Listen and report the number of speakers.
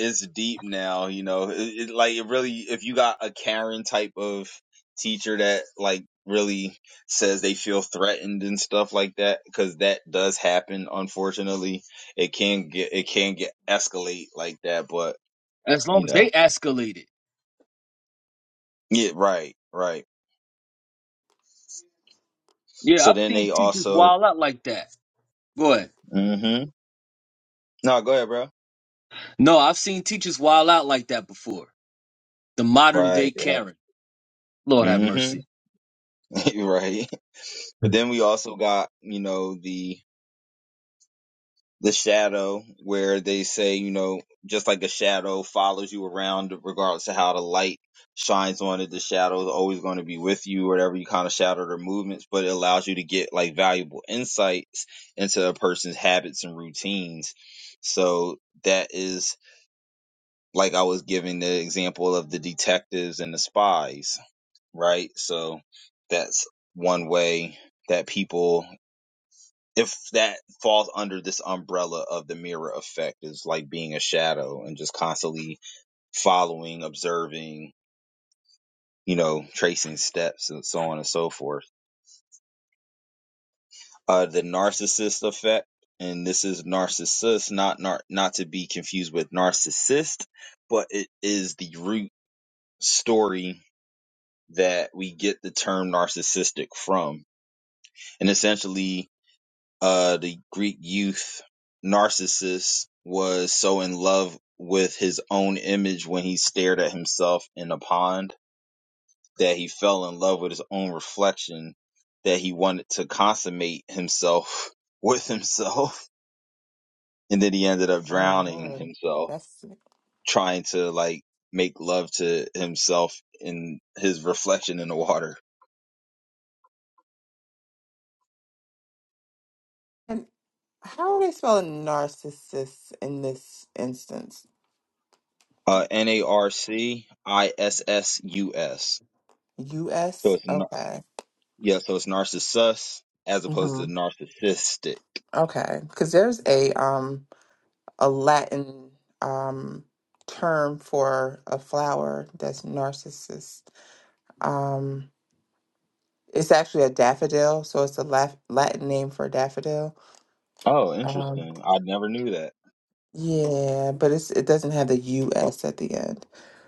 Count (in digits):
3